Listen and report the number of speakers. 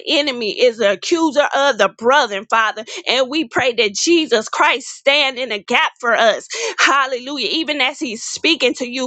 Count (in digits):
1